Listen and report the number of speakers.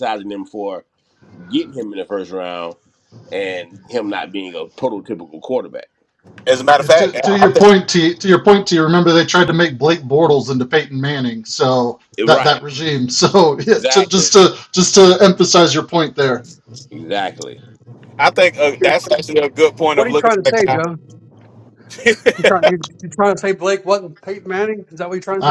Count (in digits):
4